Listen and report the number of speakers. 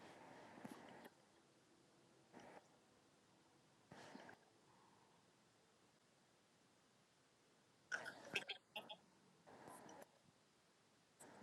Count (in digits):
0